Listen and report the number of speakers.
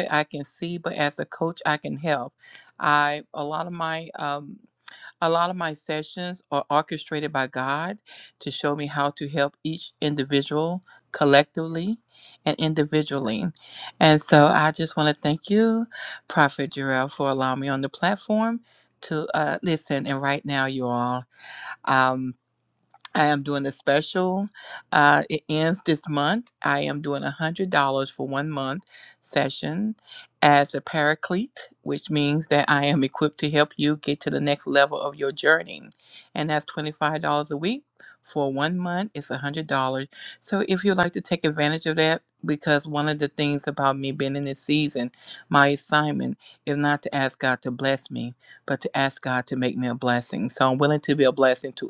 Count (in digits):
1